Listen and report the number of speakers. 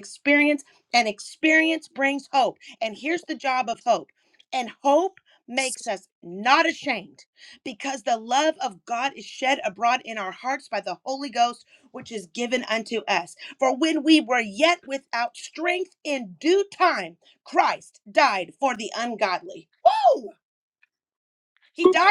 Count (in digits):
1